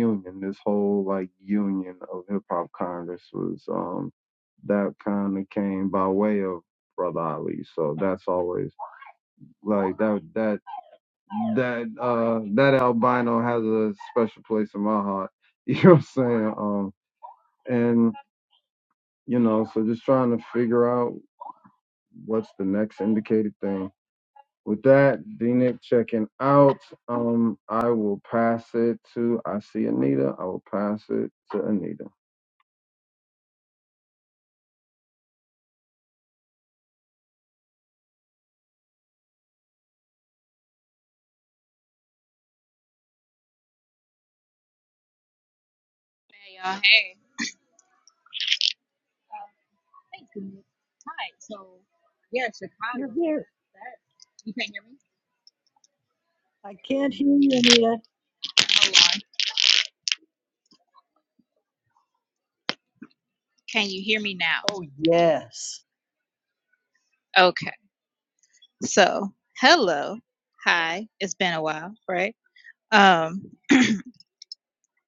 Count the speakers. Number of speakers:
3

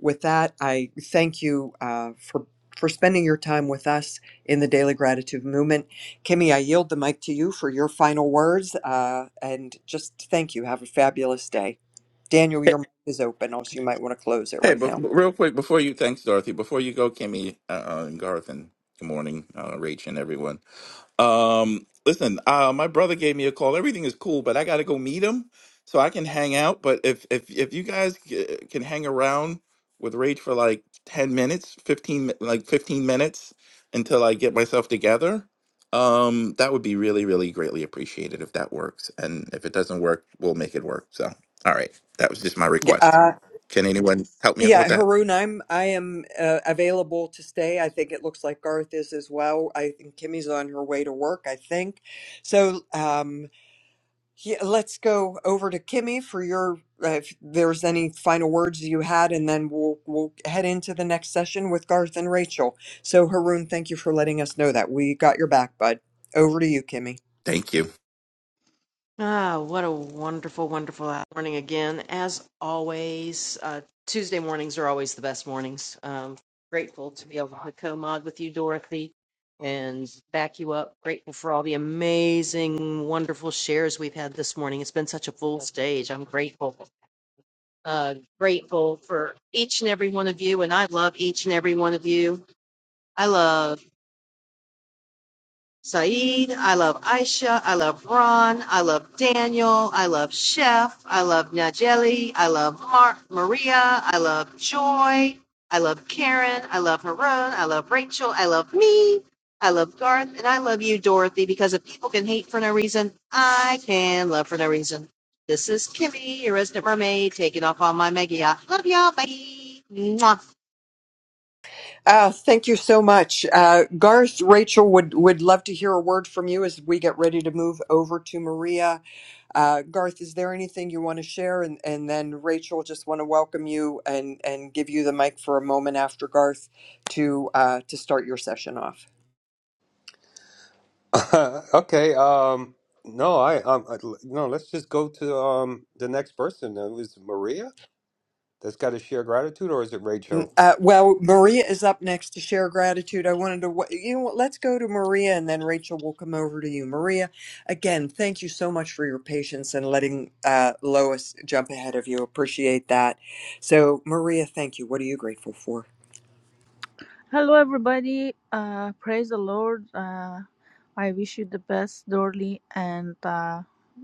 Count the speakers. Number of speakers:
5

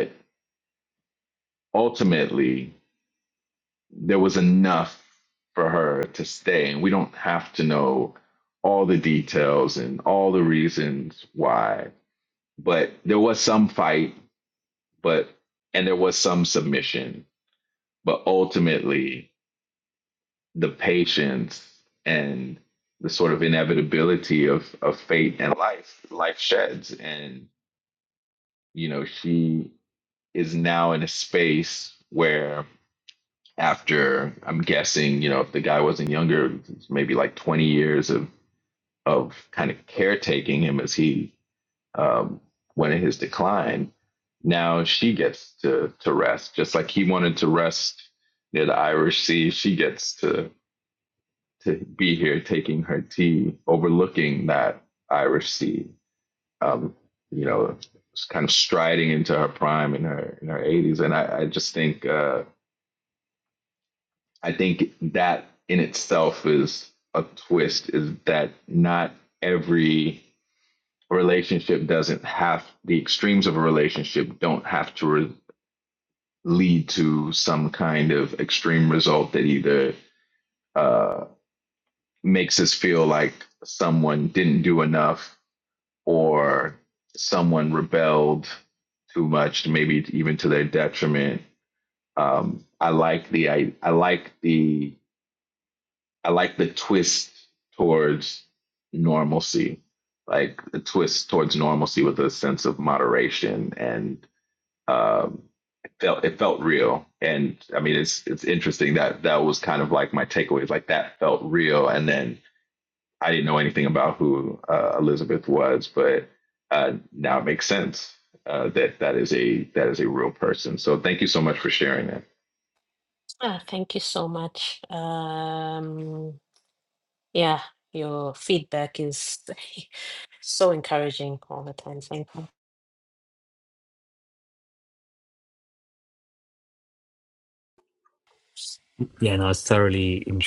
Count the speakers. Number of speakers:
3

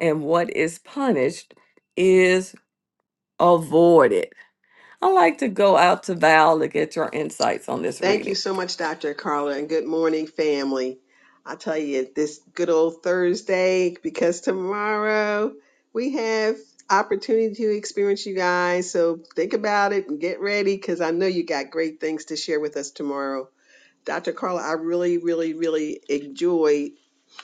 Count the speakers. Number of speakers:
2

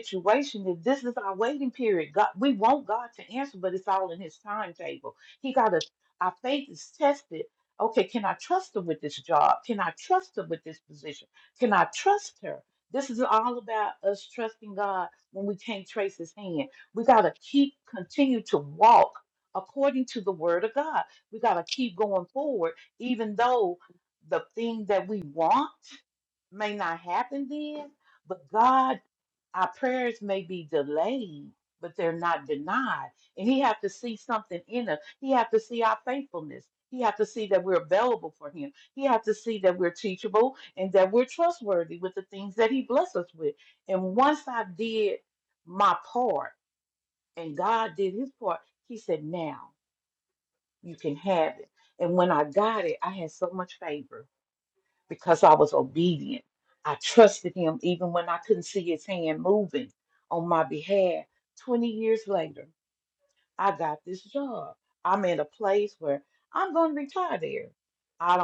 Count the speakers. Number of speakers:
1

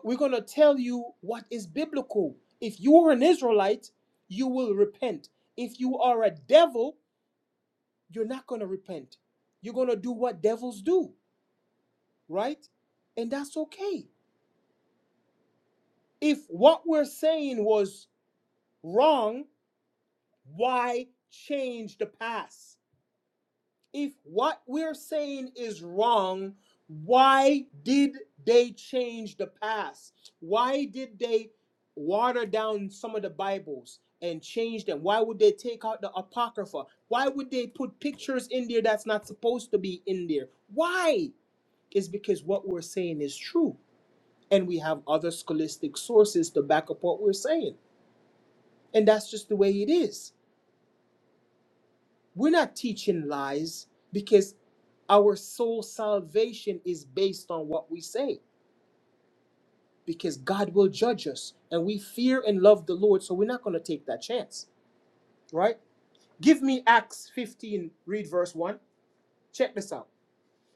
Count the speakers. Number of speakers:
1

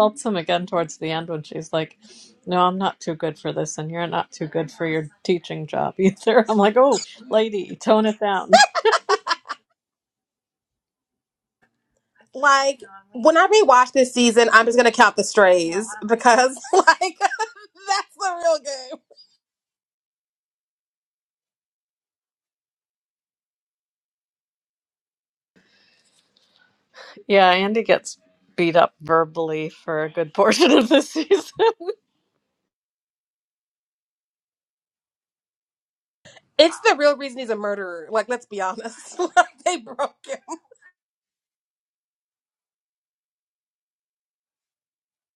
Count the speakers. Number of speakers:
2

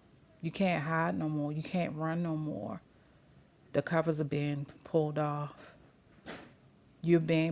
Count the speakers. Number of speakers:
1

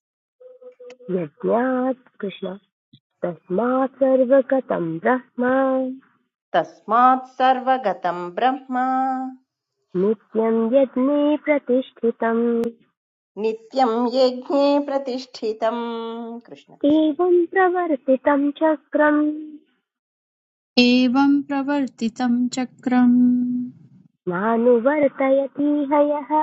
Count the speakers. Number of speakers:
3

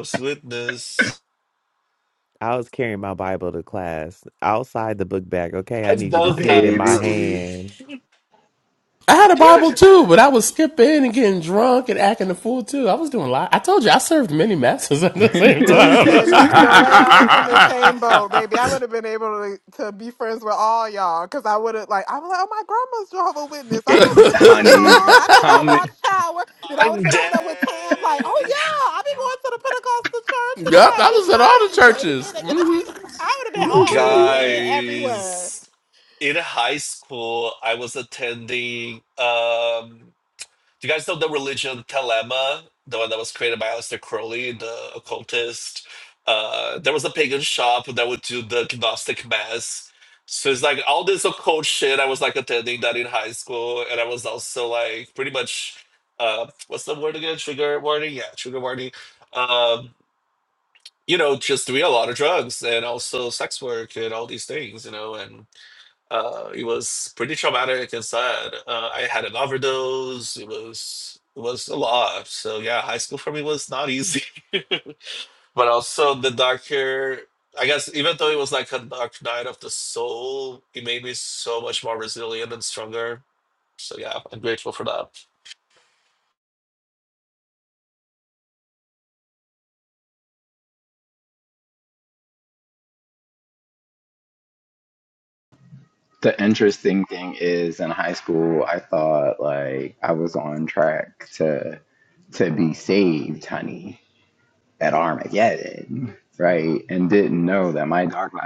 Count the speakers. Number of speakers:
5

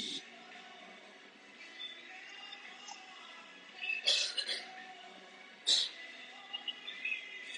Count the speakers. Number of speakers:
0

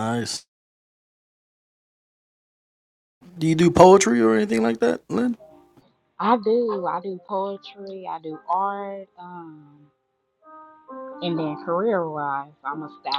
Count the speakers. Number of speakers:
2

